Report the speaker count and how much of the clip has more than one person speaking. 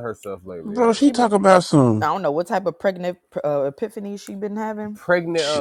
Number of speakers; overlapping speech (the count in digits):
3, about 17%